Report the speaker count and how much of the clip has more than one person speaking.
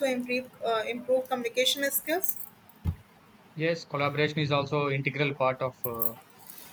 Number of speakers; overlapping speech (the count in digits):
2, no overlap